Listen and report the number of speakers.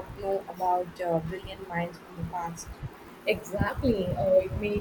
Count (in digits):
2